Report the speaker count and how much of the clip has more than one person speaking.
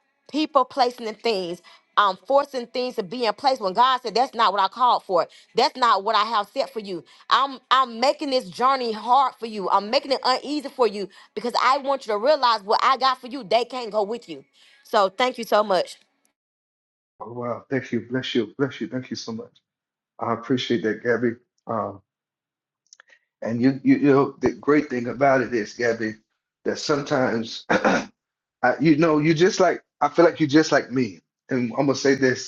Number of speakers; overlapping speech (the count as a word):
two, no overlap